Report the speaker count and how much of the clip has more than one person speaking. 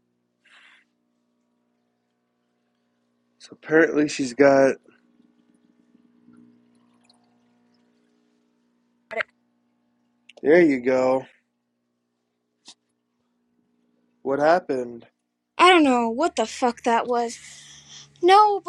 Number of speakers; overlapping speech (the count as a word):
two, no overlap